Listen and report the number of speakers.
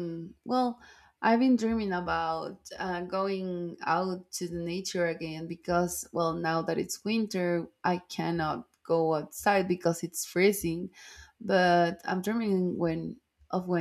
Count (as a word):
one